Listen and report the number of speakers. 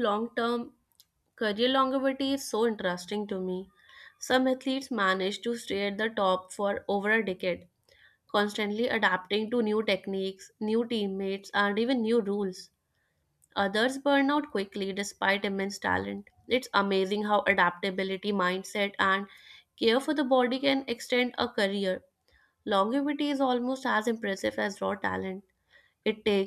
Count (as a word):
one